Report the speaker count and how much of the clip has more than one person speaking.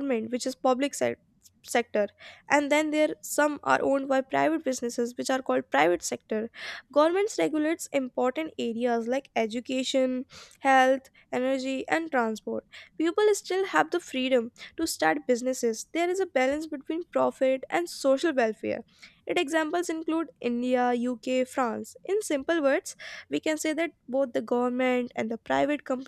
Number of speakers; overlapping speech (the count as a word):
one, no overlap